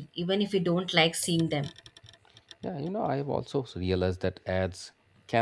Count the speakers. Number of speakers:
2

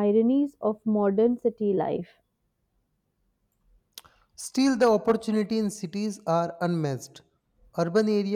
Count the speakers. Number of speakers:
2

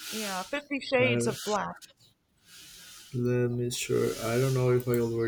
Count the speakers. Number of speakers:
2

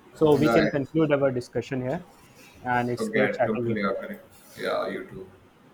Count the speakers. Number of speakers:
2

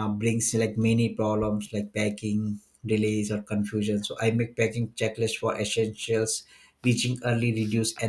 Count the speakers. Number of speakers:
1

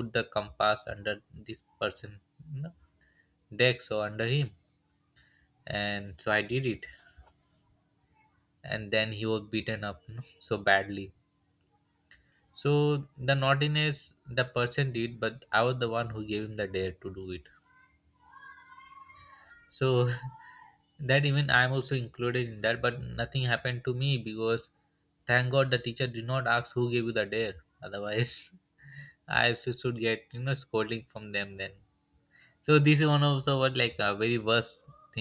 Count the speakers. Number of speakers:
1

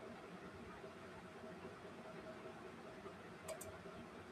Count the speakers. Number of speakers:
0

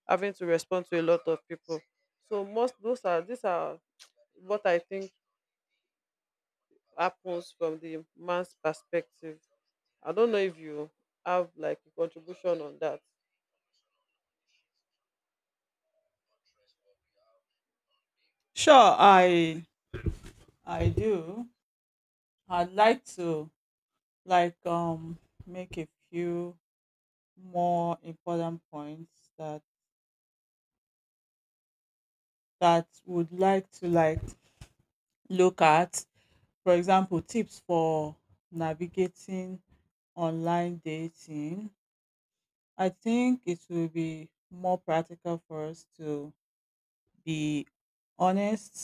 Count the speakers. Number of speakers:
2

